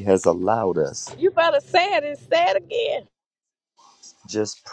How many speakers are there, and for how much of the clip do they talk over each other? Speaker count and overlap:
2, no overlap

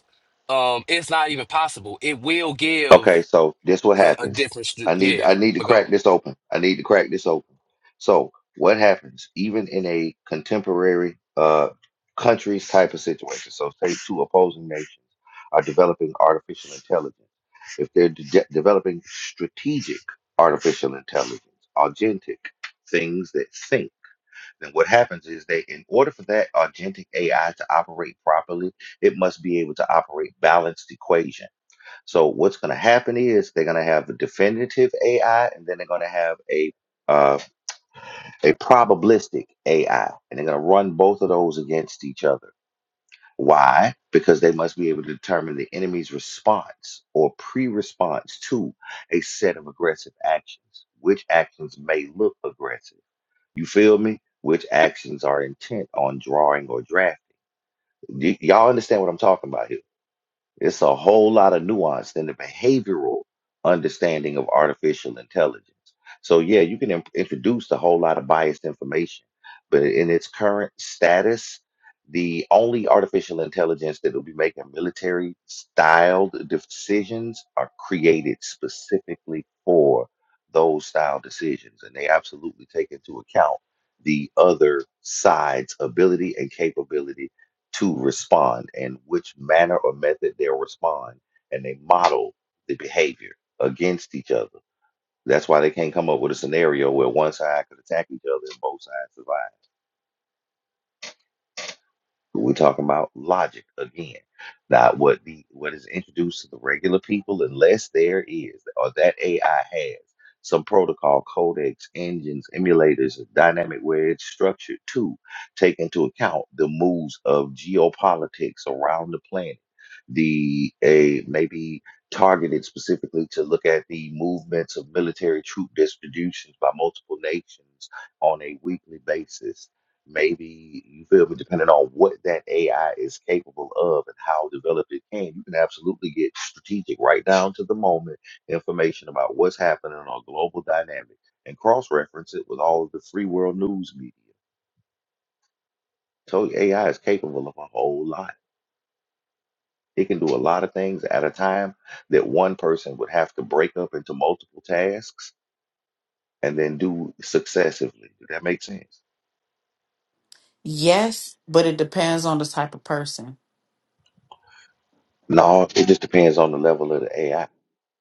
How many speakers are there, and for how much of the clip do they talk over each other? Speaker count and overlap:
3, about 1%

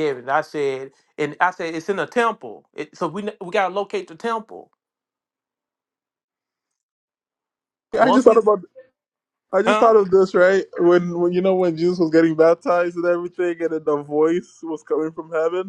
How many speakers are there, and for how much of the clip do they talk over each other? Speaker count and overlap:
2, about 4%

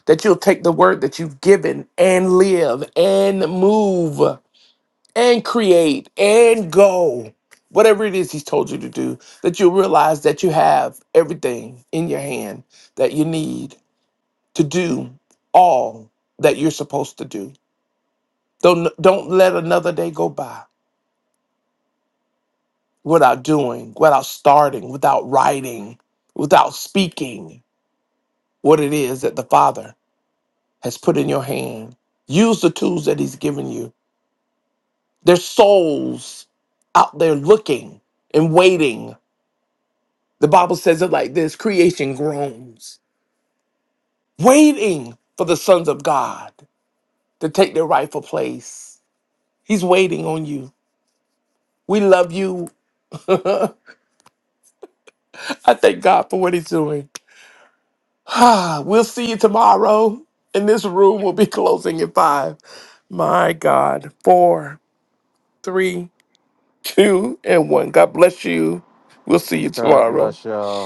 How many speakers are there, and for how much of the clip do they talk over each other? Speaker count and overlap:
2, about 1%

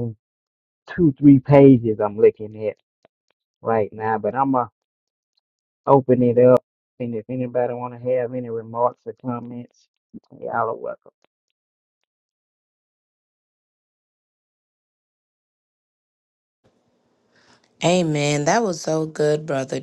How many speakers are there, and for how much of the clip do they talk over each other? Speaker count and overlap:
2, no overlap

